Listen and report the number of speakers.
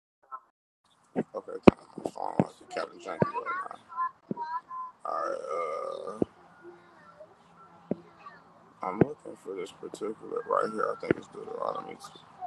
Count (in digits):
1